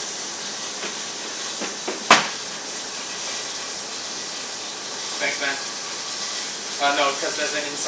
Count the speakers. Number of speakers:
1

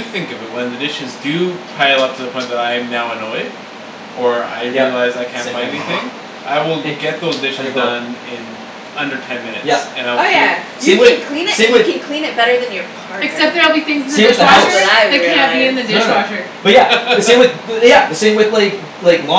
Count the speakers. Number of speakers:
4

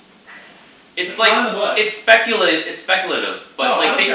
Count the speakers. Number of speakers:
2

